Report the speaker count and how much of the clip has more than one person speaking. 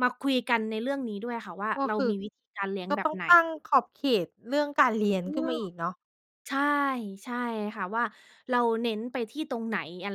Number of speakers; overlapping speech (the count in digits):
2, about 11%